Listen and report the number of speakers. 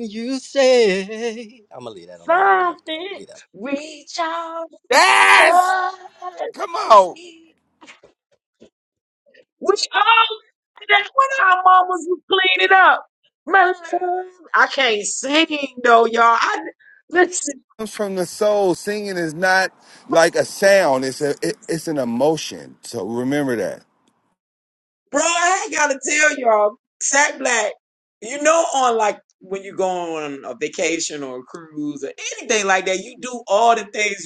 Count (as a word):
three